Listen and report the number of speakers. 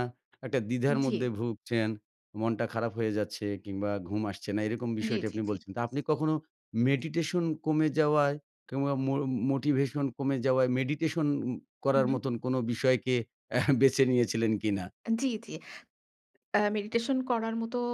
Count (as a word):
two